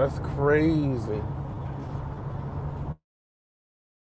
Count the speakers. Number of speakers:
1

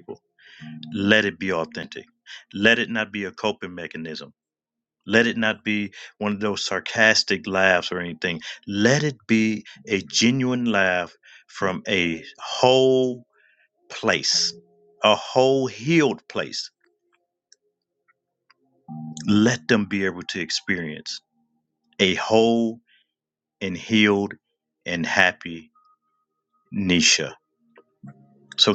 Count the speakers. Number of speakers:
1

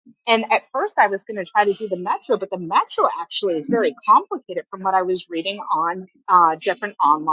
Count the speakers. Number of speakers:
1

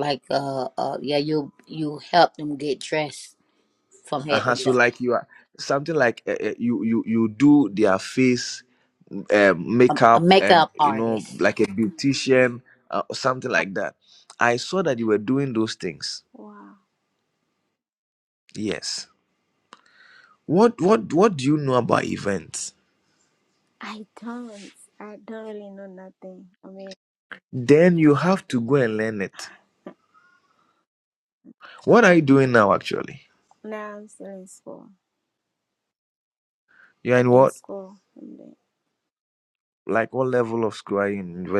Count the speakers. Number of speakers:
3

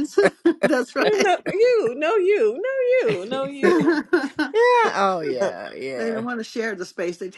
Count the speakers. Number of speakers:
3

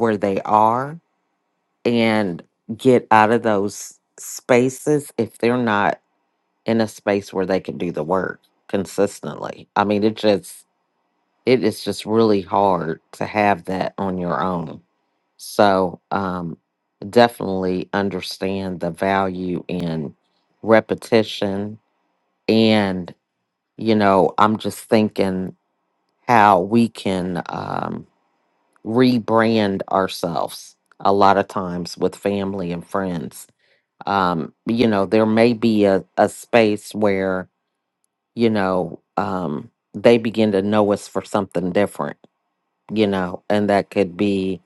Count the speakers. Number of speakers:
1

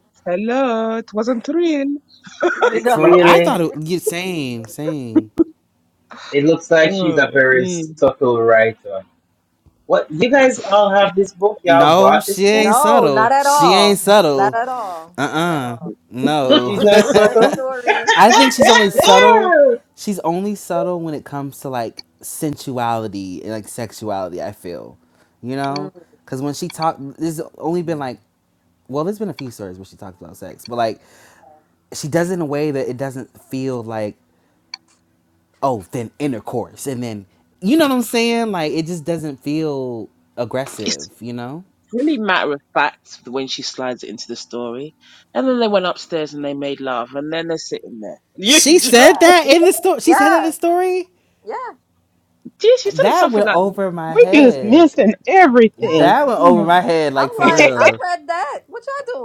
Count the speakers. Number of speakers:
5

